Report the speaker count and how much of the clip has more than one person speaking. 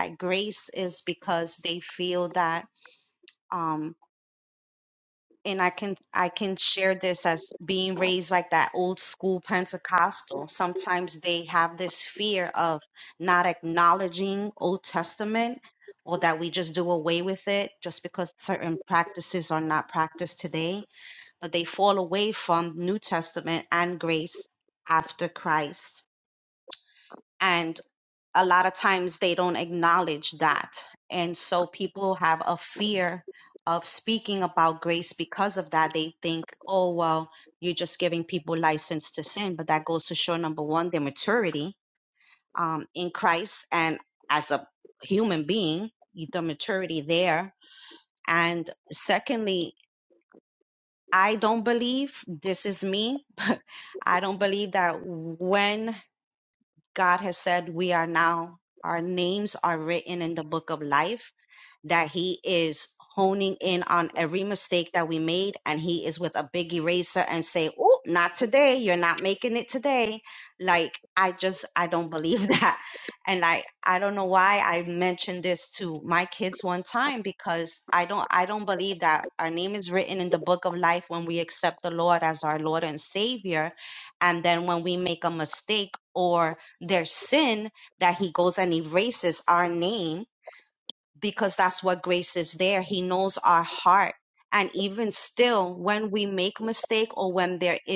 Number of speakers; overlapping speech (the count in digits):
1, no overlap